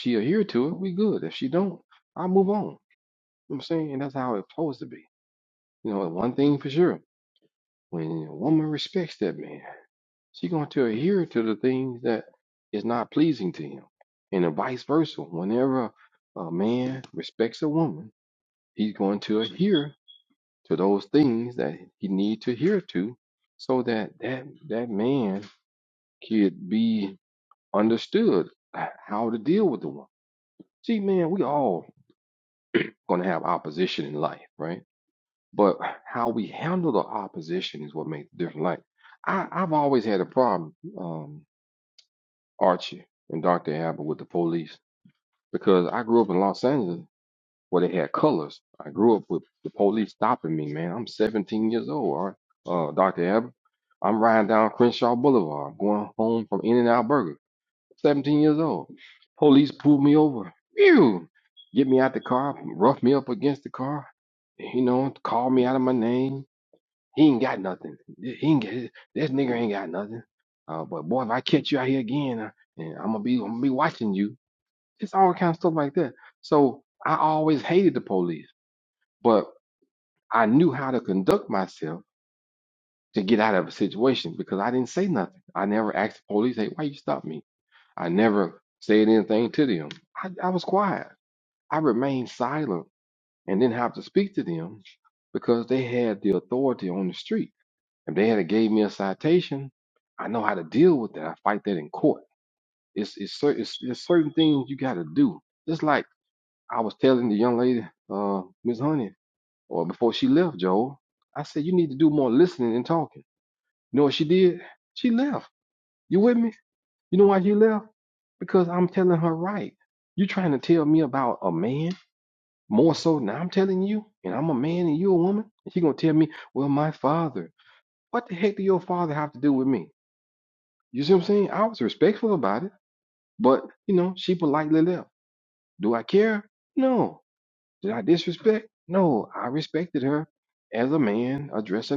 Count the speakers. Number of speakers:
one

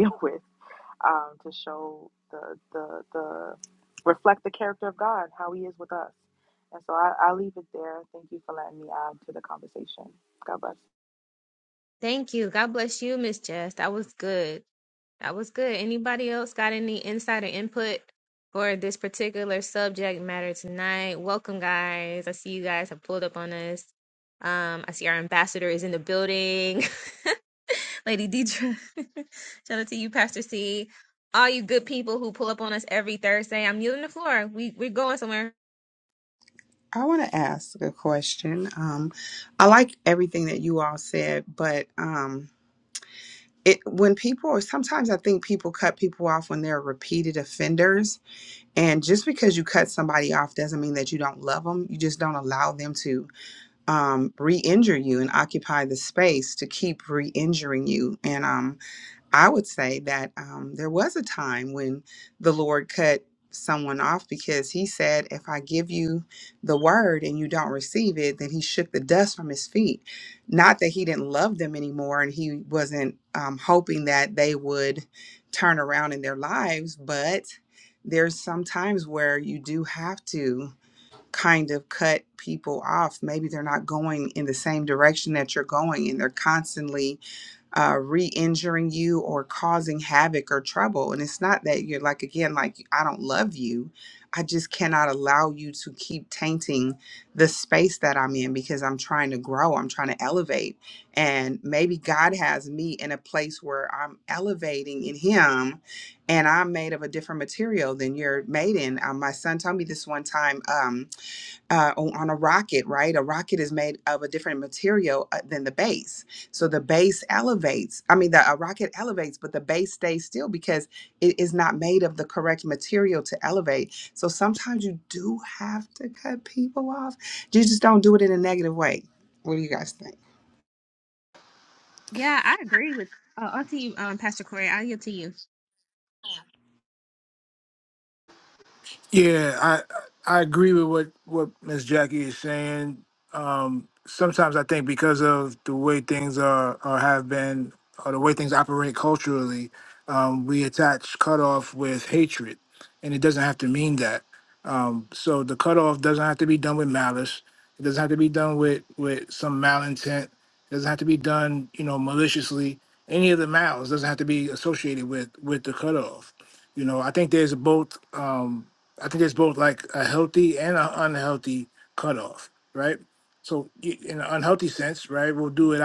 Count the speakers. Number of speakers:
four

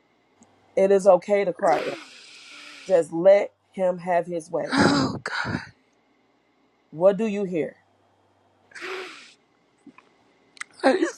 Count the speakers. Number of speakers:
two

